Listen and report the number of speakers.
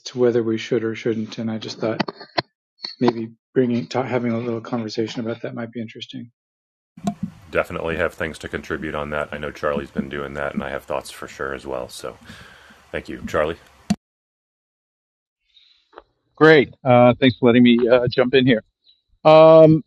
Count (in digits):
3